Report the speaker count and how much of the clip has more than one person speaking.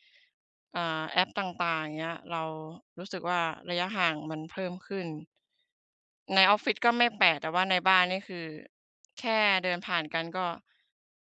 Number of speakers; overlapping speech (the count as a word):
one, no overlap